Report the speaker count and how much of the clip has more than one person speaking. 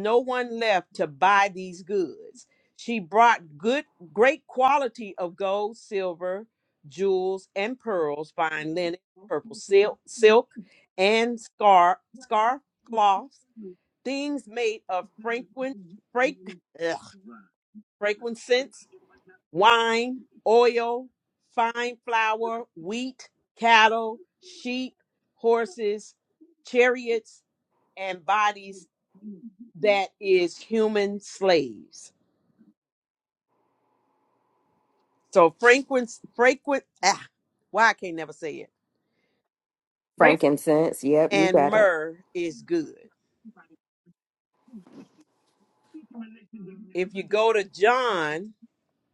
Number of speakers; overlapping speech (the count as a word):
two, about 1%